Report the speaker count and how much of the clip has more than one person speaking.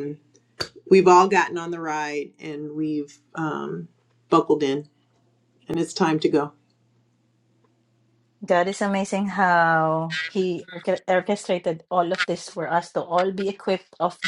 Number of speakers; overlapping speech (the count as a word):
two, no overlap